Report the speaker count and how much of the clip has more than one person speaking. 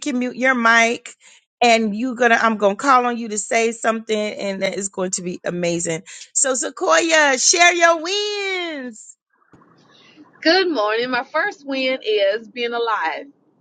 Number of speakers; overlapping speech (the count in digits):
2, no overlap